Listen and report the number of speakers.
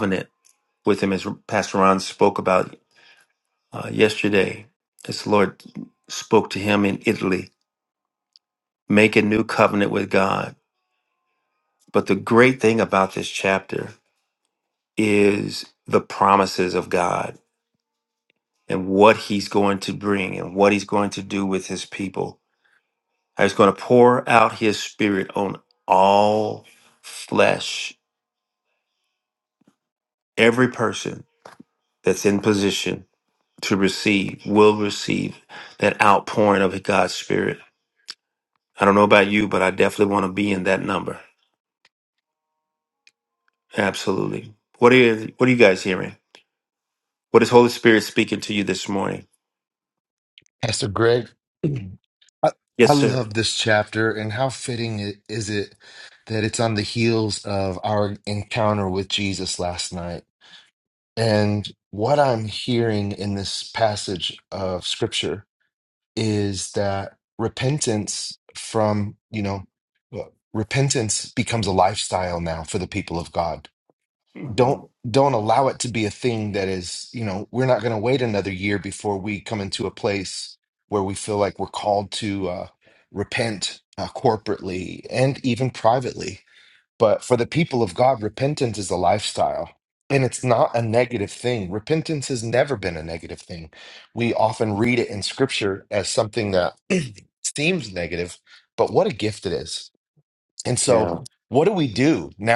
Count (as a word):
two